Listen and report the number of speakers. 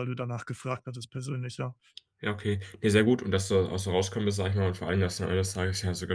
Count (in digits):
2